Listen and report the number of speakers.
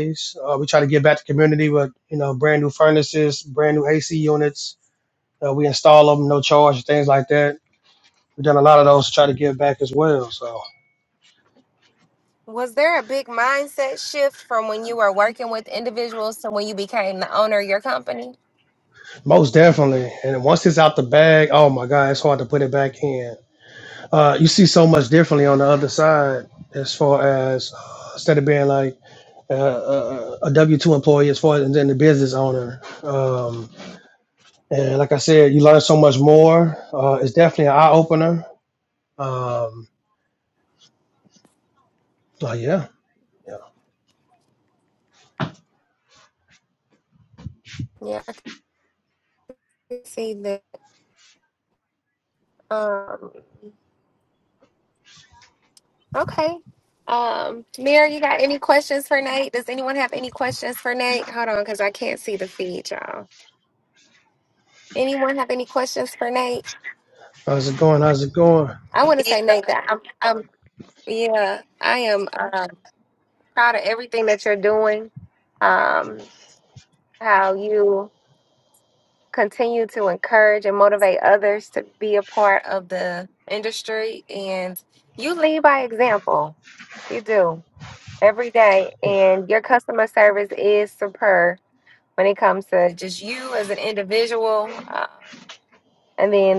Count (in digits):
2